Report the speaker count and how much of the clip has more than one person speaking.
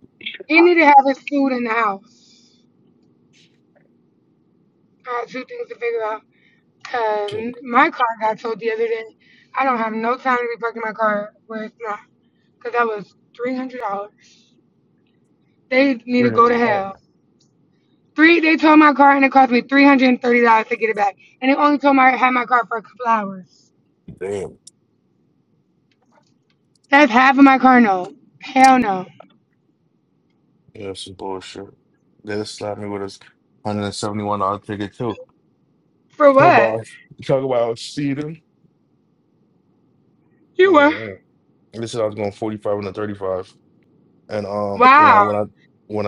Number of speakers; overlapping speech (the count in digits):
2, about 4%